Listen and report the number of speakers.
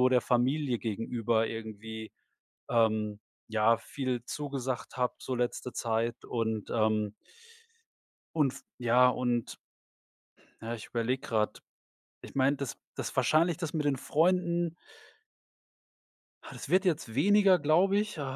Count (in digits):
1